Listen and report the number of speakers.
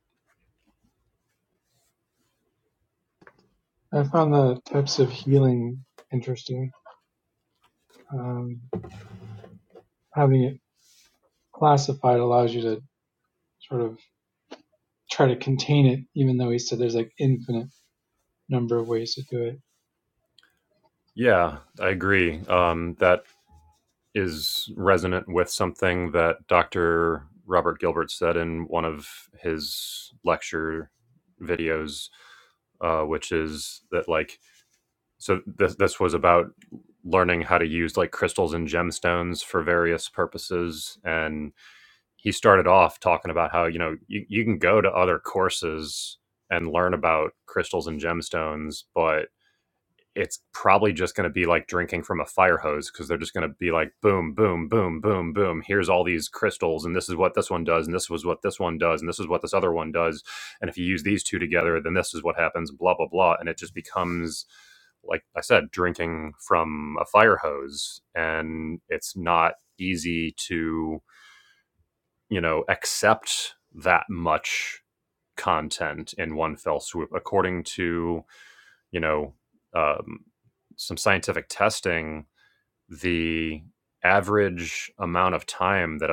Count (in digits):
2